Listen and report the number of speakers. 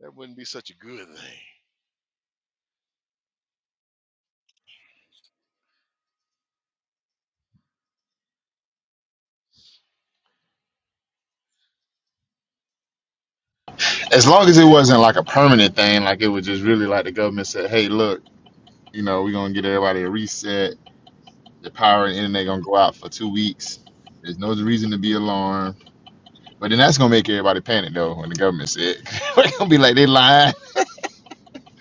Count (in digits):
2